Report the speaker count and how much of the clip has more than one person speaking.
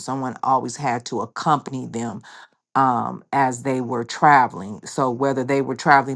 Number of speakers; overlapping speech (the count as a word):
one, no overlap